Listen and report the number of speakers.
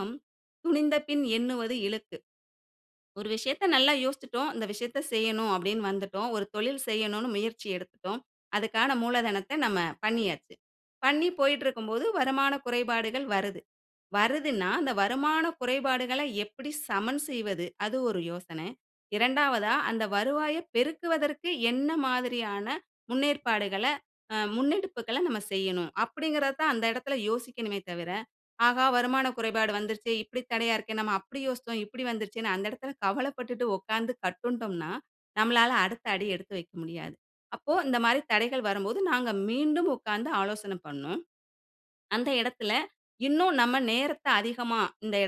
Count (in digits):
1